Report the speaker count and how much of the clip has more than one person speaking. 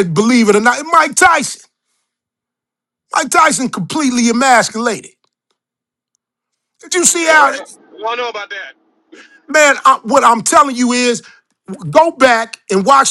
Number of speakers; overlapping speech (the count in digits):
2, about 3%